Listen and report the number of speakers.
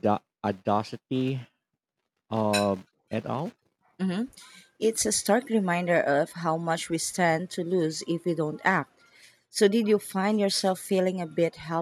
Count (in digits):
2